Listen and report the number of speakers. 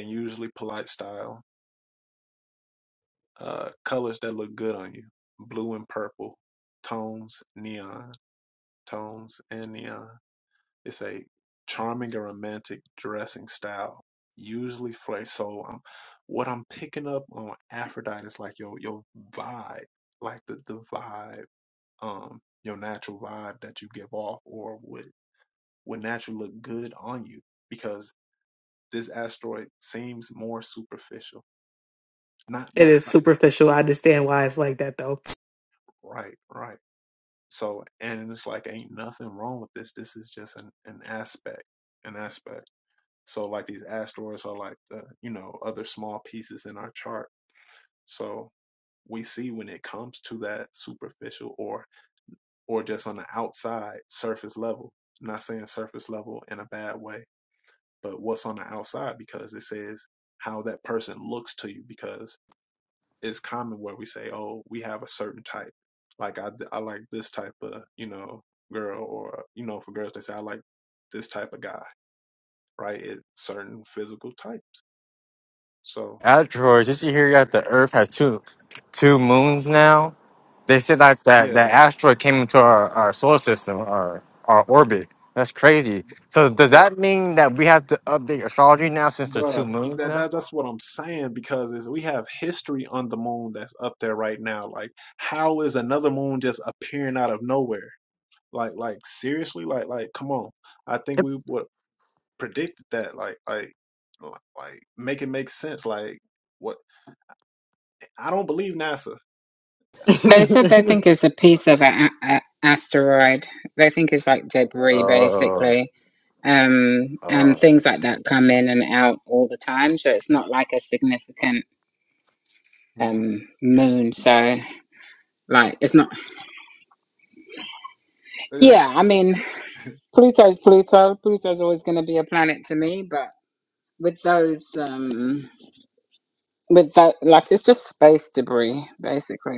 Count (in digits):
4